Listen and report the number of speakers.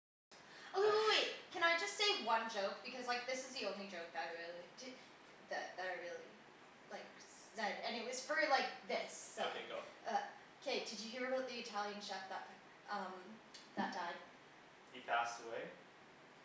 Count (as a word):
two